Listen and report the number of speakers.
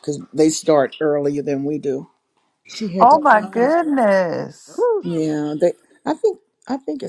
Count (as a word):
three